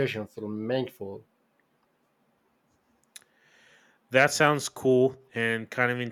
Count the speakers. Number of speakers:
2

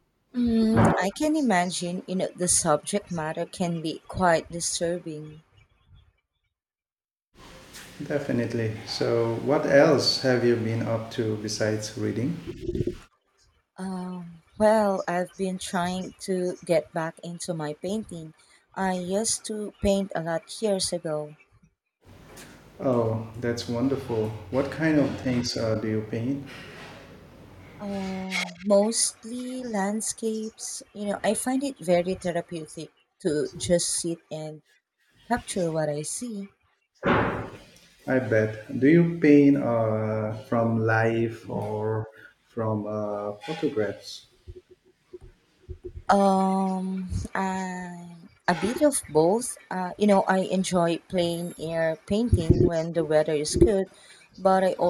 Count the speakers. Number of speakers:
2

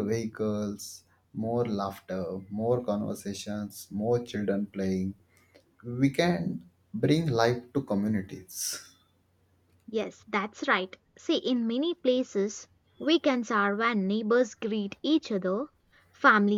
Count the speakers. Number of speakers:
2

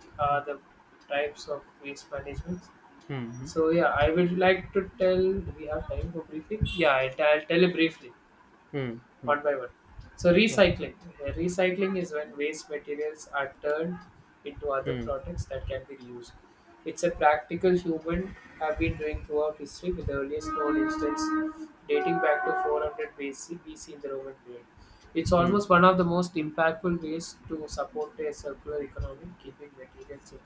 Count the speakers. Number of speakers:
2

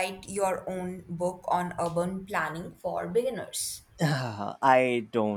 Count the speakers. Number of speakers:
2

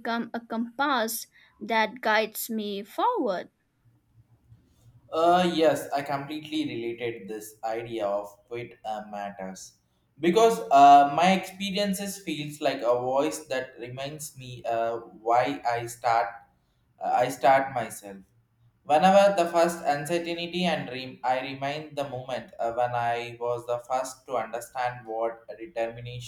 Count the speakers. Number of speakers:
2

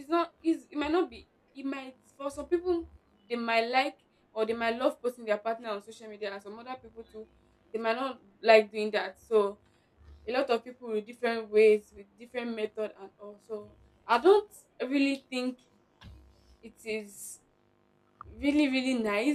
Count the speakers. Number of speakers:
1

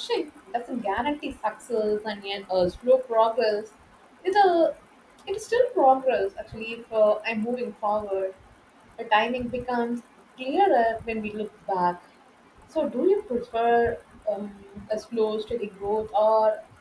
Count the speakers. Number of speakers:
1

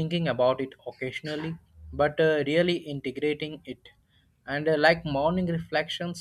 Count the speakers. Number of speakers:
1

